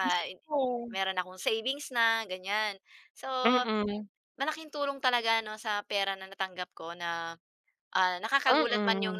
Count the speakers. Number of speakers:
2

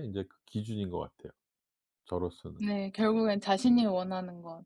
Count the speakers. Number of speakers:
2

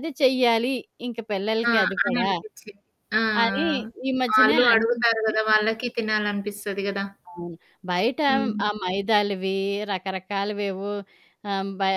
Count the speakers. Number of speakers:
2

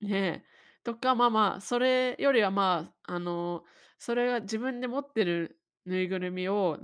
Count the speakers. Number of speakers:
1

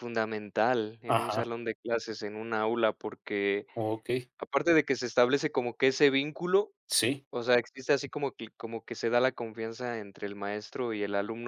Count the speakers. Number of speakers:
2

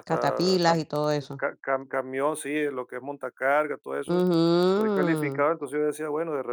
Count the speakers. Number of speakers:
2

